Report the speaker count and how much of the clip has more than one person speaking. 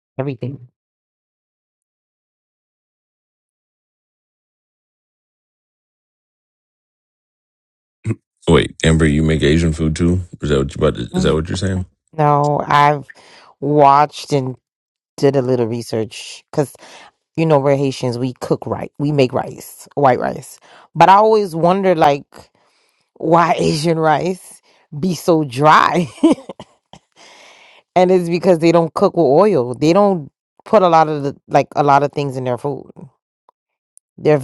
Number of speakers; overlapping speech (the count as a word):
two, no overlap